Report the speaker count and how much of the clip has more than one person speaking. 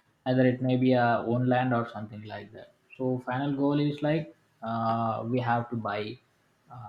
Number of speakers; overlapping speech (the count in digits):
1, no overlap